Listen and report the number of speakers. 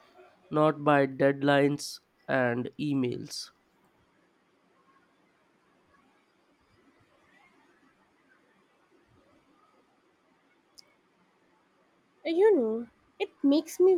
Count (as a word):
two